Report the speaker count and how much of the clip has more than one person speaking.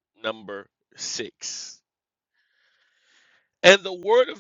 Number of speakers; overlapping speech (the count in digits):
1, no overlap